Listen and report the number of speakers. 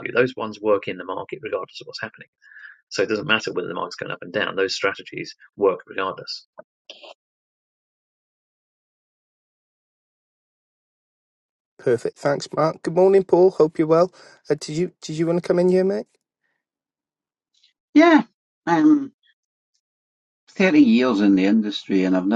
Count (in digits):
3